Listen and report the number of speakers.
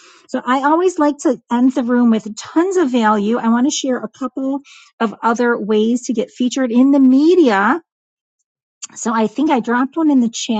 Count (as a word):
one